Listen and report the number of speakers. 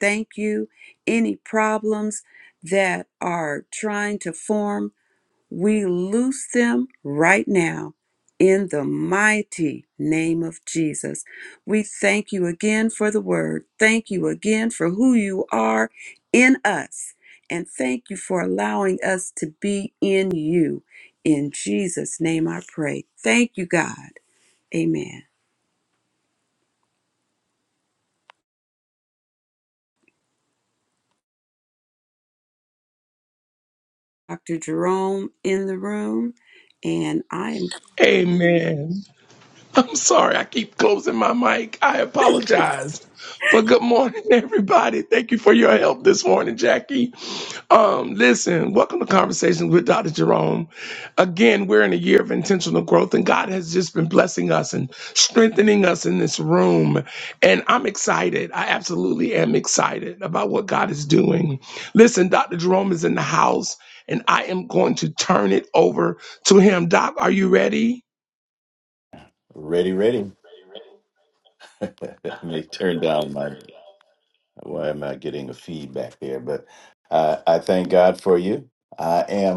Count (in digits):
3